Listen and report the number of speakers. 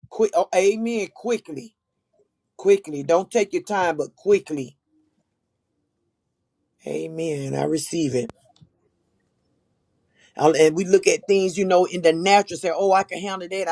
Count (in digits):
1